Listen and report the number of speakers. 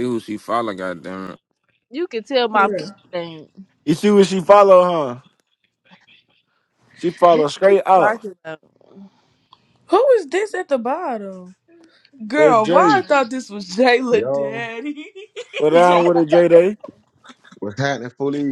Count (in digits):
5